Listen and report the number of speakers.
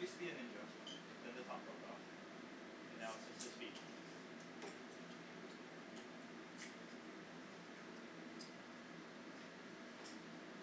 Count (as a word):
one